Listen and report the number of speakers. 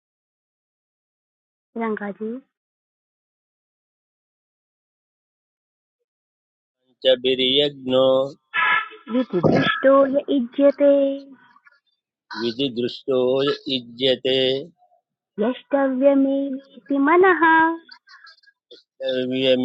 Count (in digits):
2